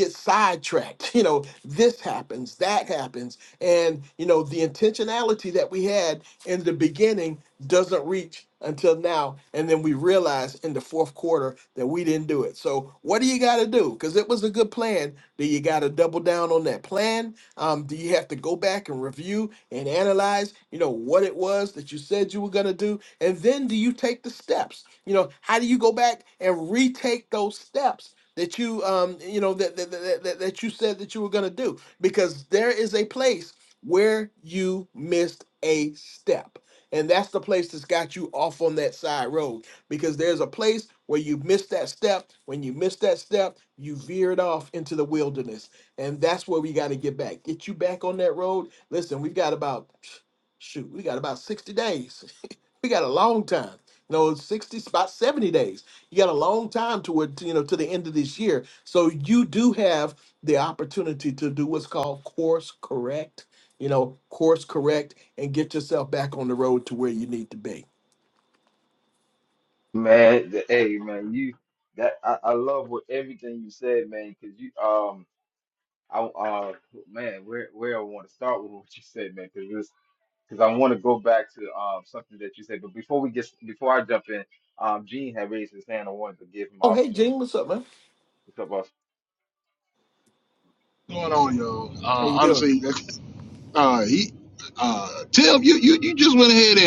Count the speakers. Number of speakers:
3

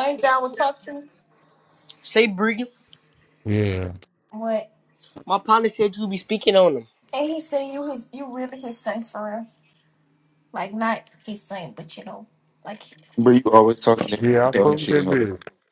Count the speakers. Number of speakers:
4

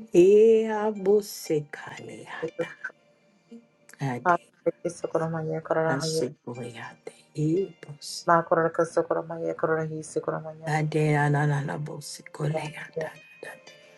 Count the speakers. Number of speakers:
2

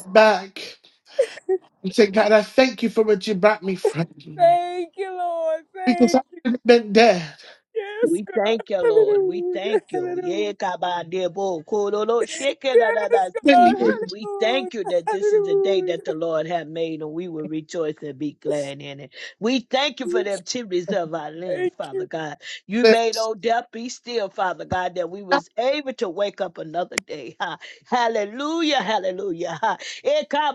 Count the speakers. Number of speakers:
3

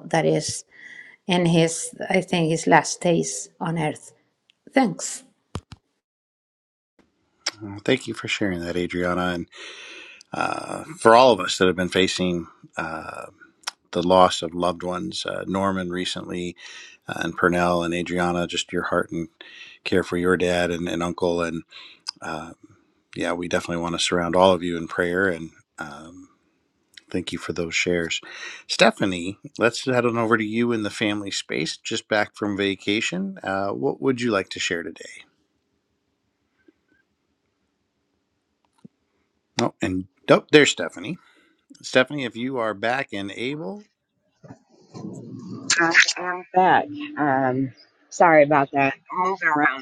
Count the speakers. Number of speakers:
3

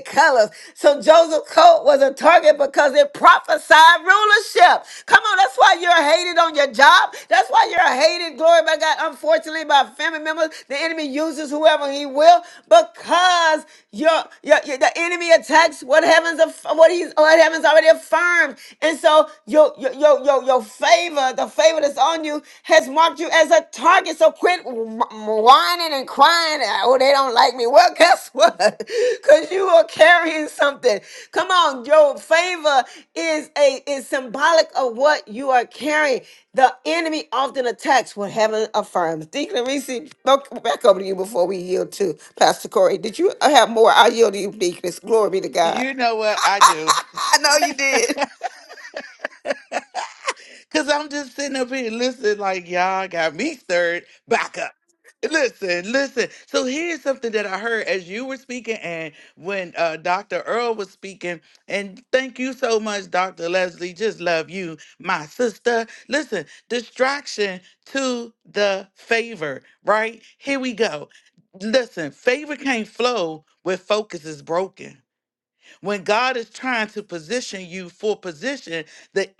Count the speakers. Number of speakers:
2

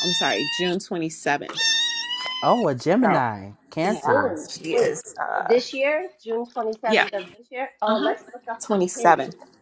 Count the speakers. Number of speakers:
3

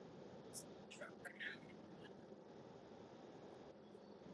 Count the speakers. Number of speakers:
0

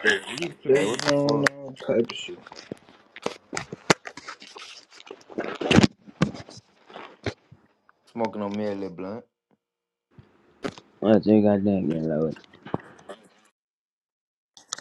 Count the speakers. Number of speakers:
3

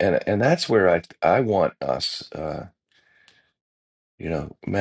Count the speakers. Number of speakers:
1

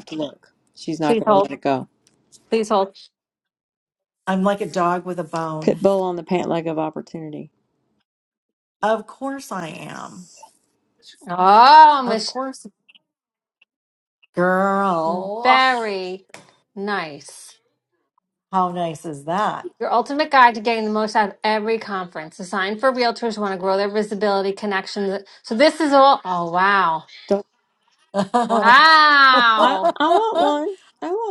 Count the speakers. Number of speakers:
3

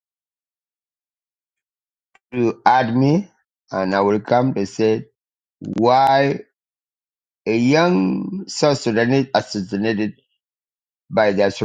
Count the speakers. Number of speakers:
1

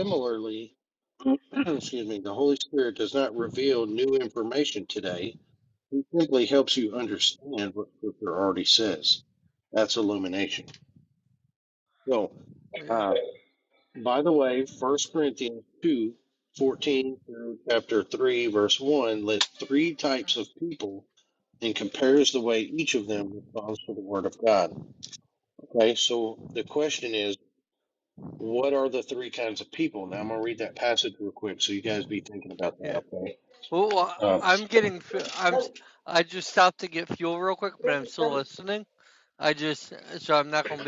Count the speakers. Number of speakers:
2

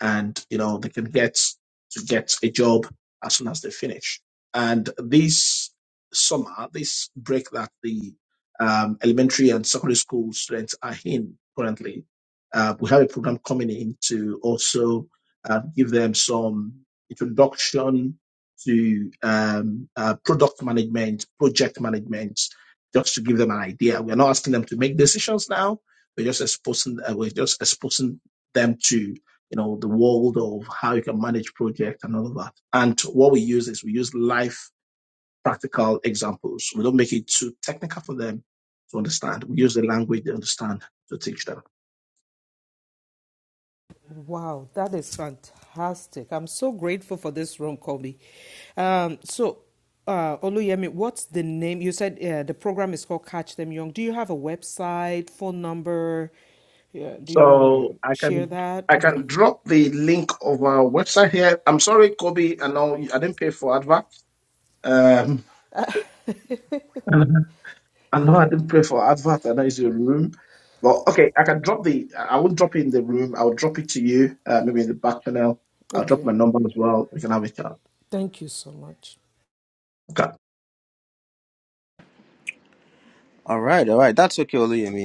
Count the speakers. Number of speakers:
3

